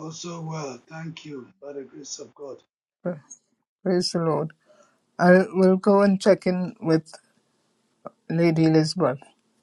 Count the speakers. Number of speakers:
2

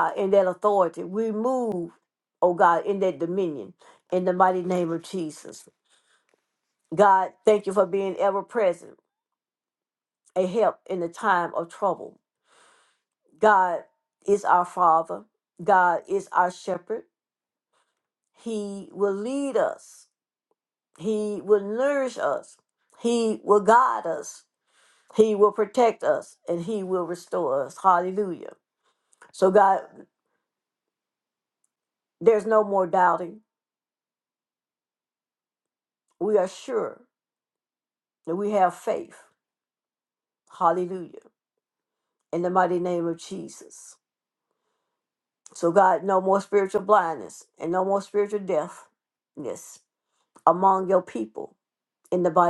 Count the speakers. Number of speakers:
1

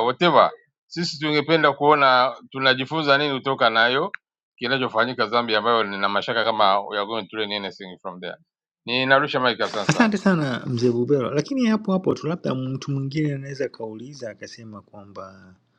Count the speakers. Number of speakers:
2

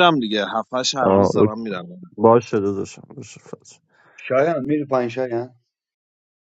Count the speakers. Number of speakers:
3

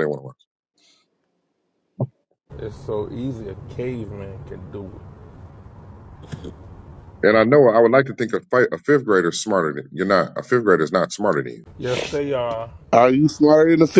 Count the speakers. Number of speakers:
3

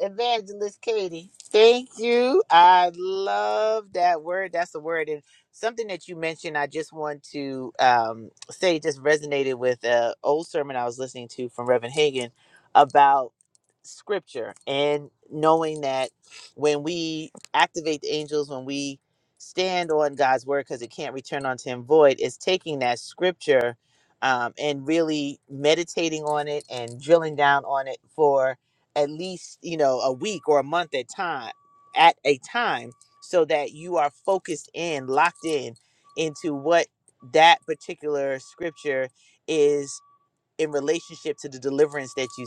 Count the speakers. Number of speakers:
1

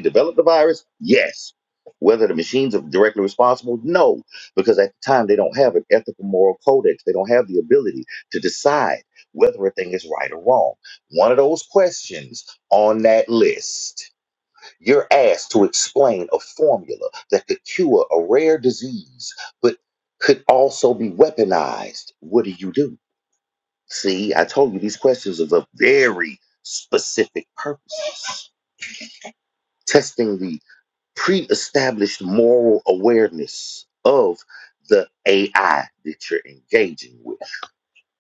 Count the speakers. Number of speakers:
1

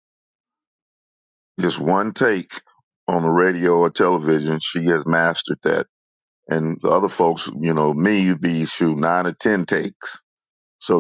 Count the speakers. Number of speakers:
1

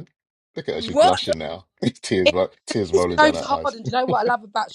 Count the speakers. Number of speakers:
2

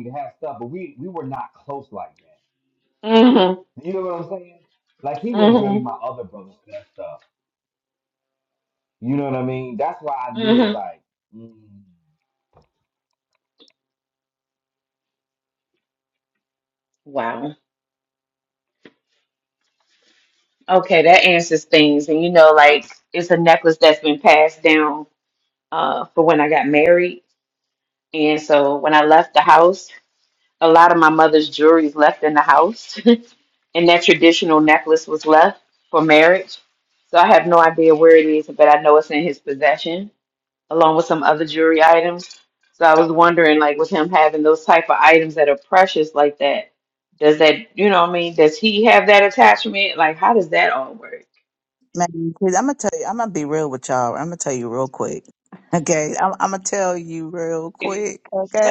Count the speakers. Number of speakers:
3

